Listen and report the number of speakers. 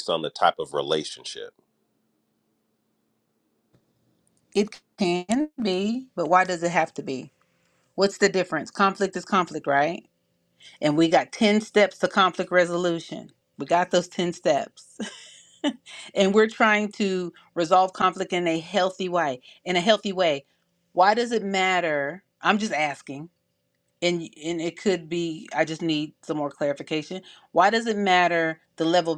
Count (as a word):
two